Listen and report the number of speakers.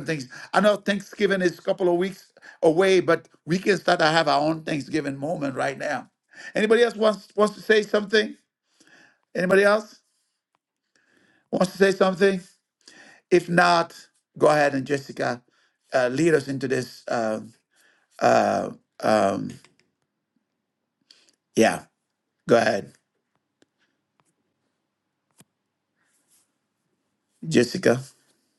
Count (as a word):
one